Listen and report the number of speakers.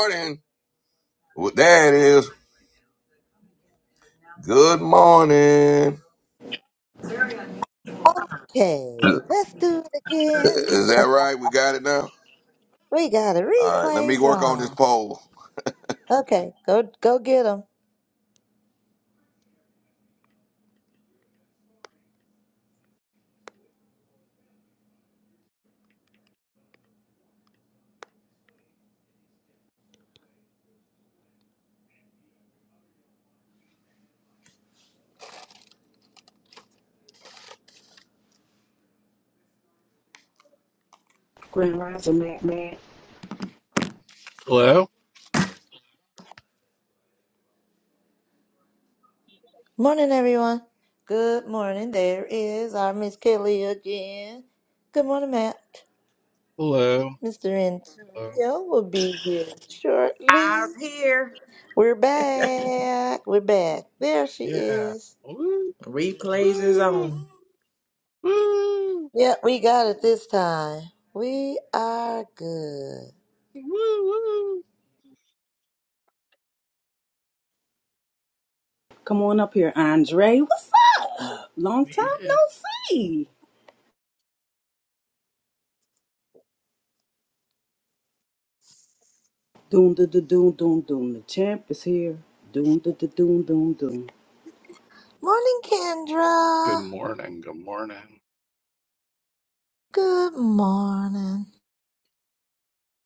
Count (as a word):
five